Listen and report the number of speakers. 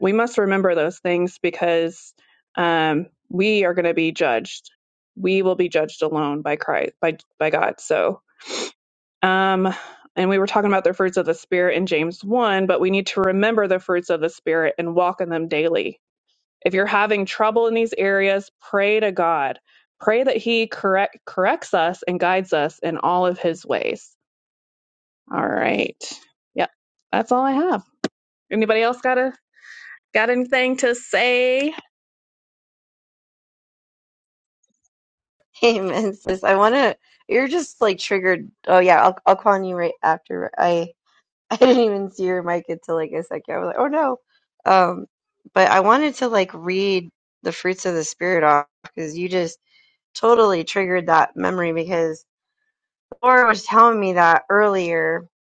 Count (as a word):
two